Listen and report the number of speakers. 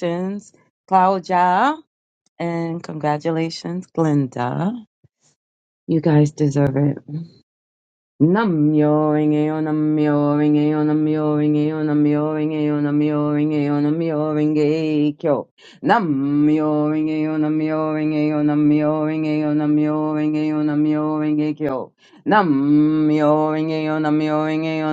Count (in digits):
1